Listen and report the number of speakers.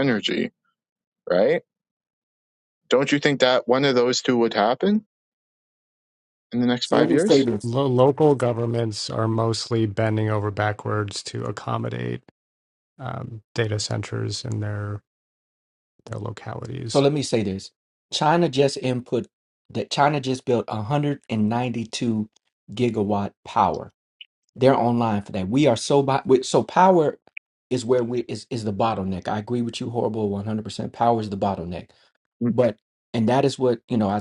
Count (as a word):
three